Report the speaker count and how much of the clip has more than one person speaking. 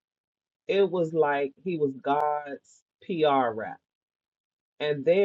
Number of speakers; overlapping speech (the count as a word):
one, no overlap